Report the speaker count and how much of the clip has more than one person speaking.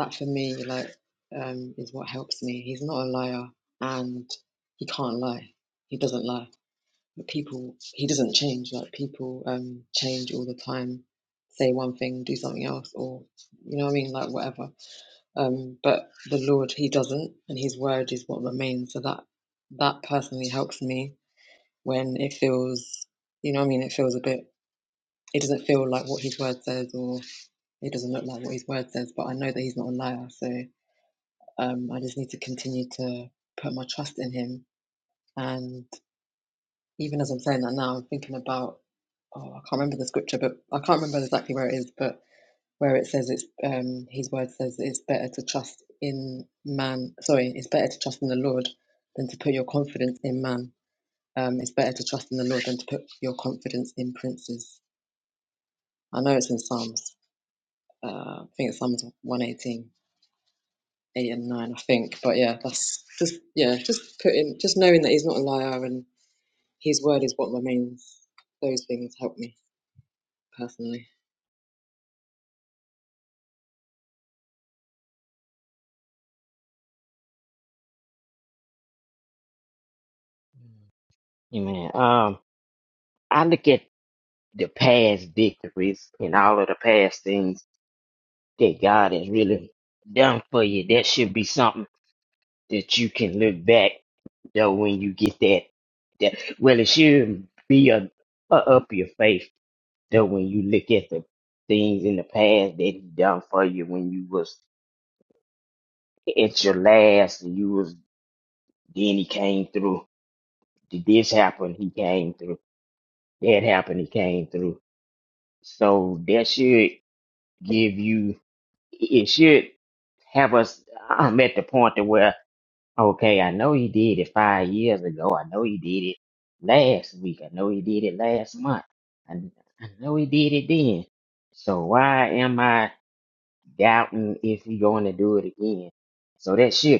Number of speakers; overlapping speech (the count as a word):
two, no overlap